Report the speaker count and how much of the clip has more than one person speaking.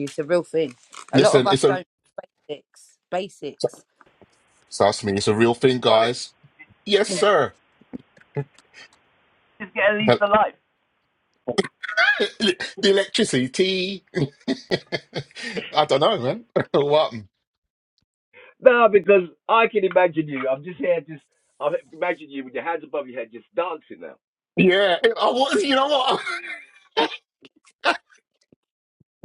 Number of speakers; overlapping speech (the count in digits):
3, about 3%